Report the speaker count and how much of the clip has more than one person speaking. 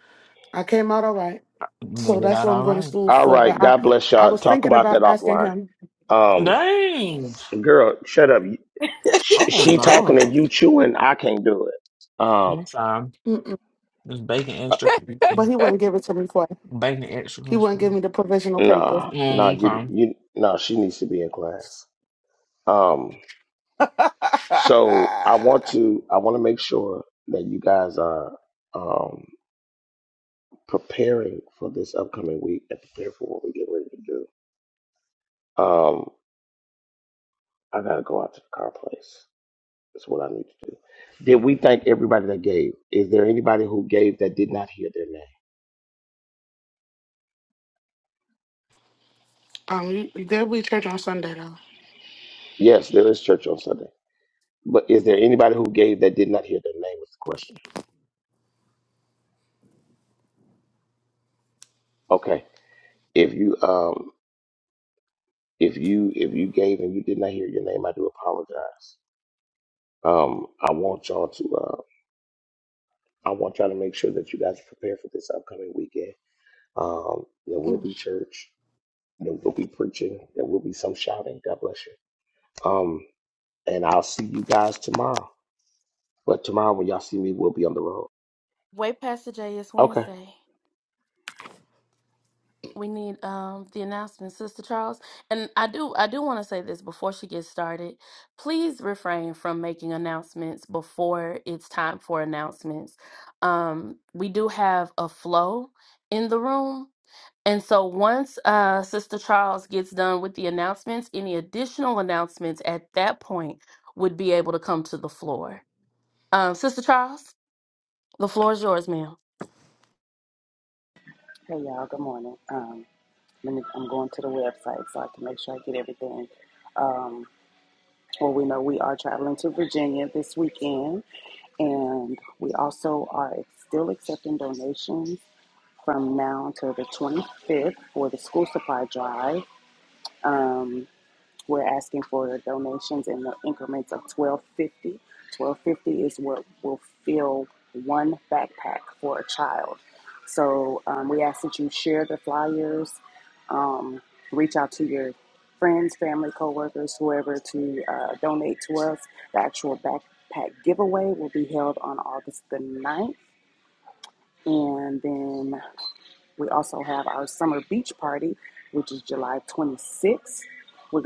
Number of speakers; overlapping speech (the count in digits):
5, about 4%